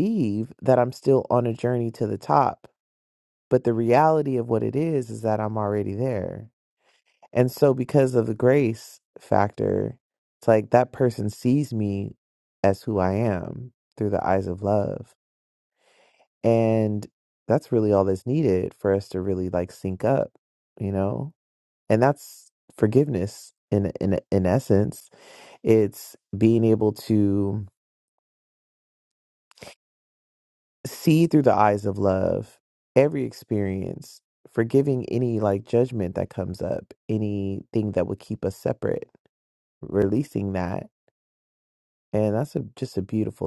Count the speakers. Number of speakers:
1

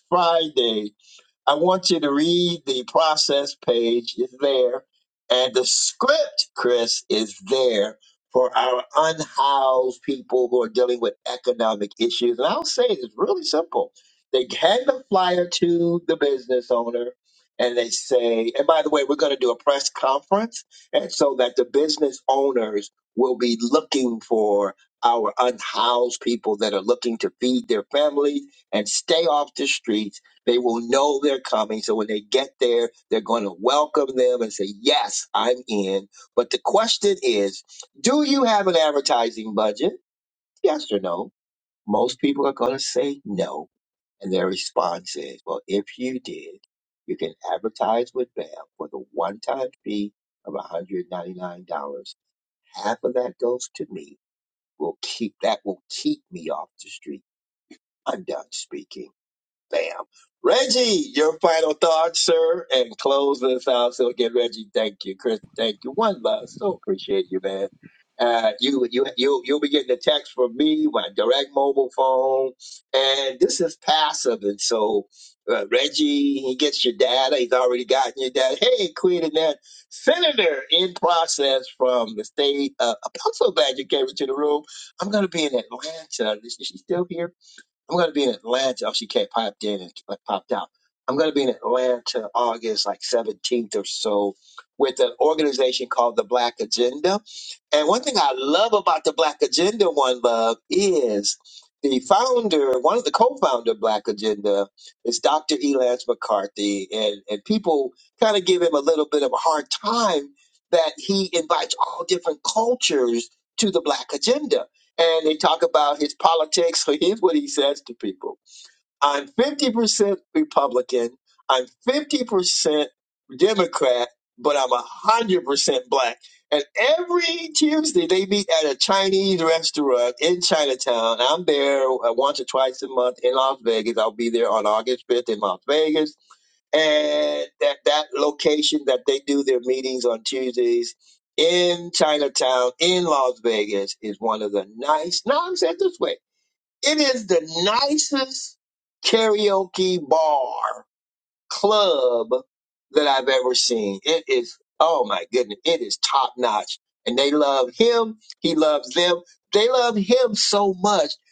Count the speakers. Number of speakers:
1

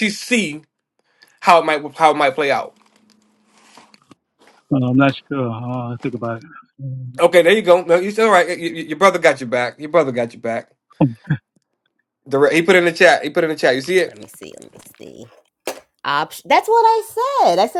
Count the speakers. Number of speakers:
3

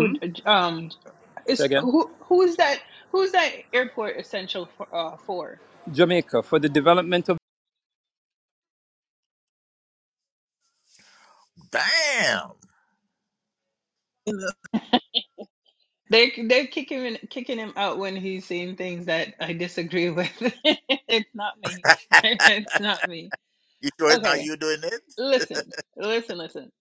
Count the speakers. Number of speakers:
3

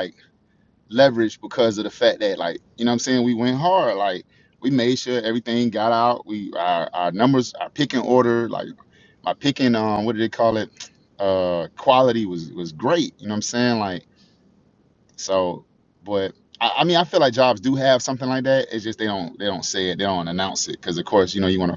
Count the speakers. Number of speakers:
1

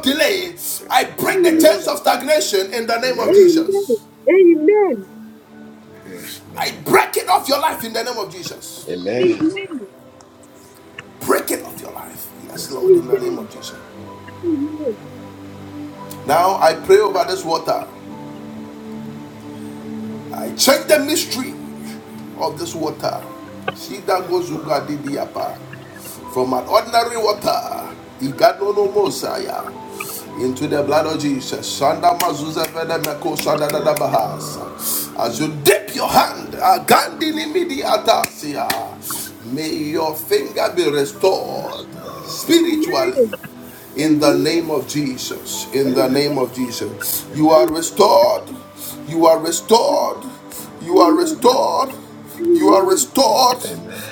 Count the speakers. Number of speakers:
3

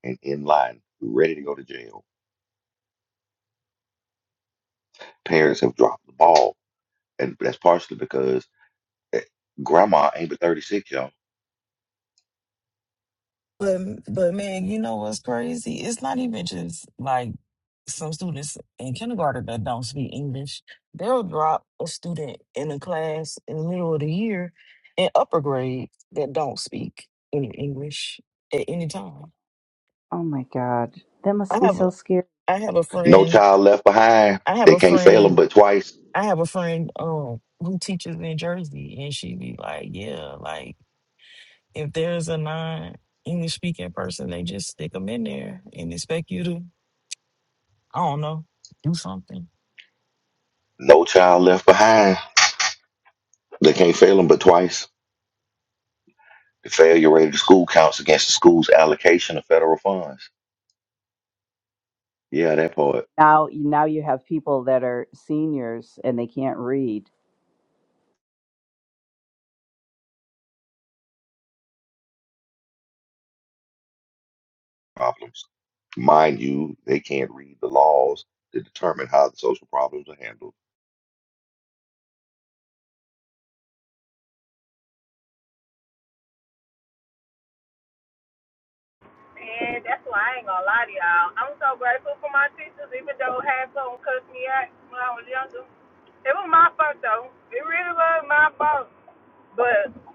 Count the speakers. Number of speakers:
4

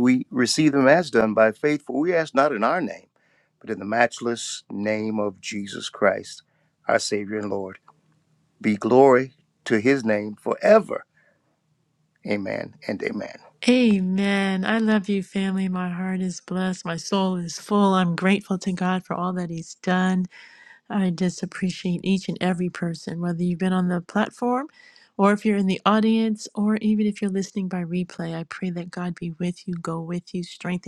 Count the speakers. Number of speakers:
2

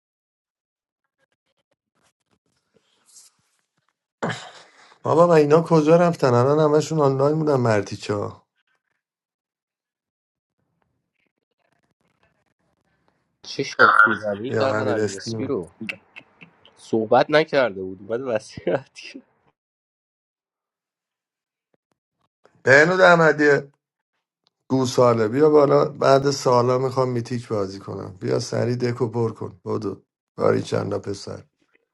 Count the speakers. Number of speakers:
2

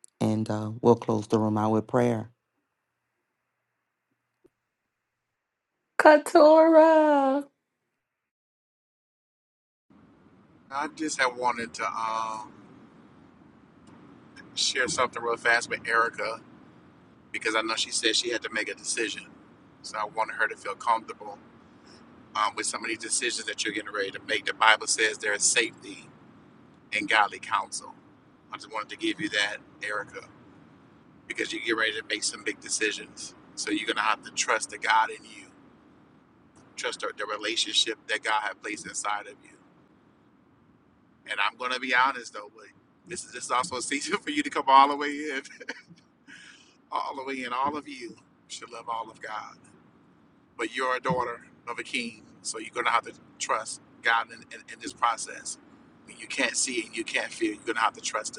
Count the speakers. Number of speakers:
3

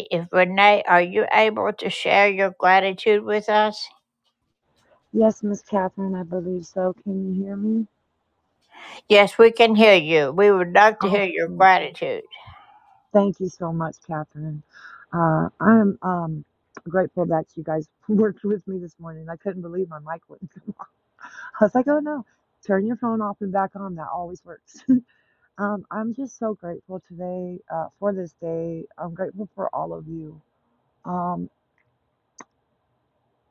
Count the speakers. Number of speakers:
2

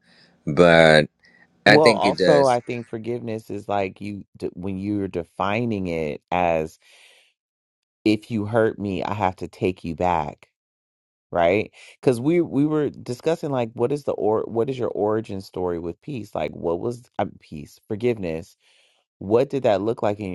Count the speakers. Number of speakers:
2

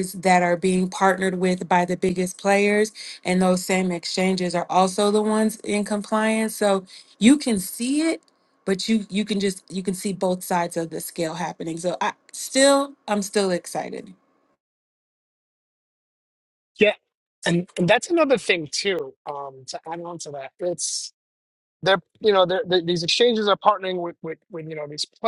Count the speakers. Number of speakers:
2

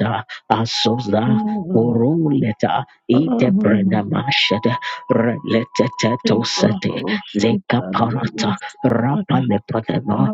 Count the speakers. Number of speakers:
2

